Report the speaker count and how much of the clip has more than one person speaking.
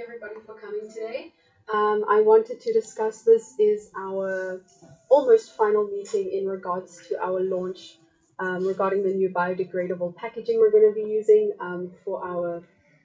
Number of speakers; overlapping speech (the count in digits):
1, no overlap